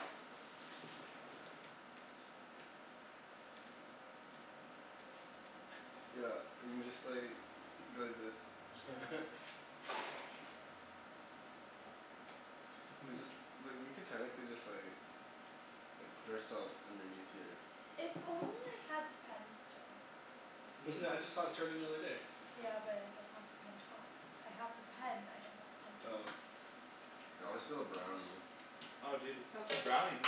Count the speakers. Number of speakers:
four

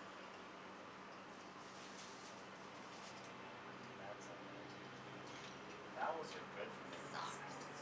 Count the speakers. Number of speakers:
one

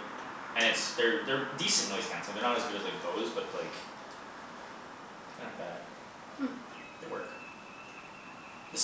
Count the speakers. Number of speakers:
one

